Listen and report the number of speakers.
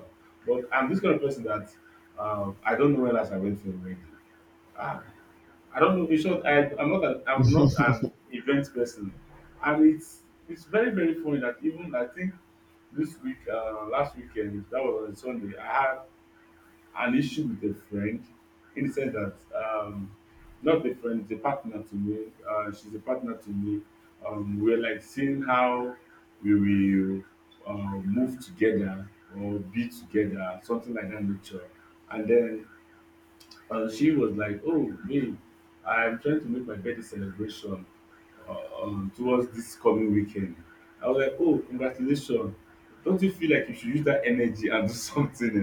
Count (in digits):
1